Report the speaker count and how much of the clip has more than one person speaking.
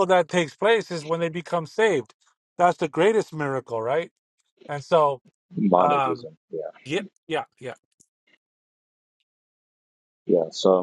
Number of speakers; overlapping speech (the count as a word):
two, about 4%